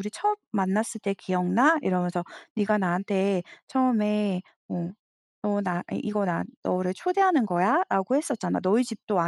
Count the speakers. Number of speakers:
1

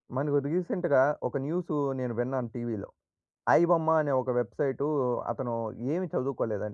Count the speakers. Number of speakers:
1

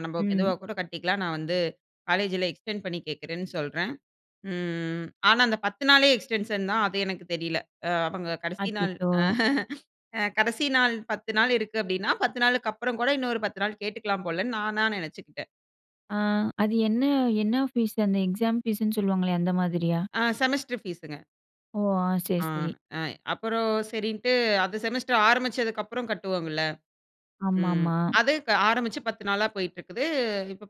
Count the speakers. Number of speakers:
2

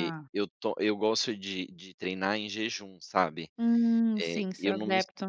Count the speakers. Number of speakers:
2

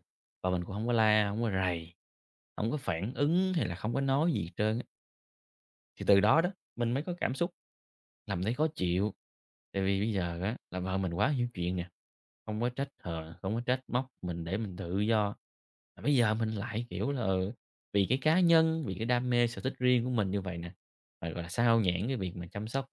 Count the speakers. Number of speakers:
1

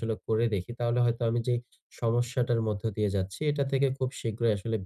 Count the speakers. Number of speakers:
1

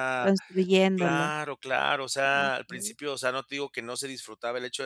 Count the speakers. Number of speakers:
2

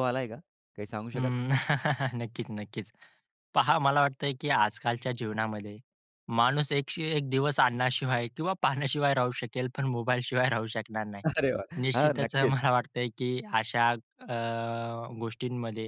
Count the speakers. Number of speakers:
2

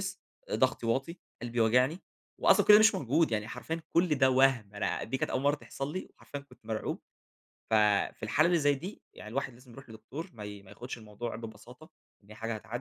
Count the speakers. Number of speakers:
1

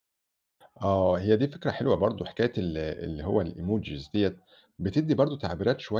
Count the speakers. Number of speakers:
1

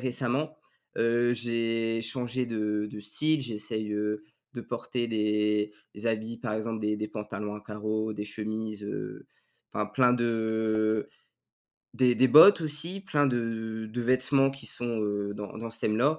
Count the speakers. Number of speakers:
1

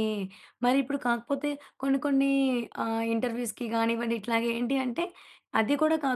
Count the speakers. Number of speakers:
1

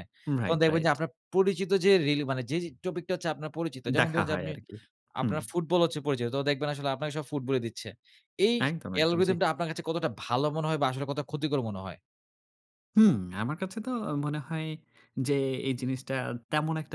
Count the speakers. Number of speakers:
2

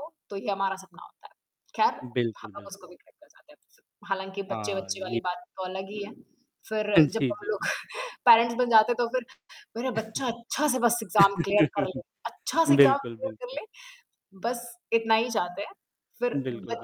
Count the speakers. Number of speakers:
2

